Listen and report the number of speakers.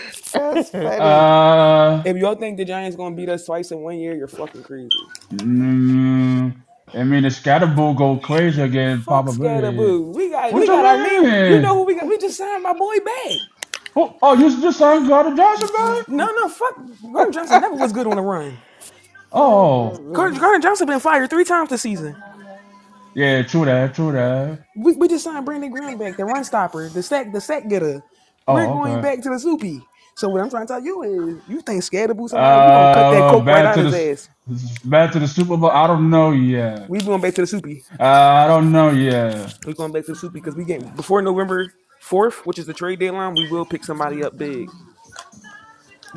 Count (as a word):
three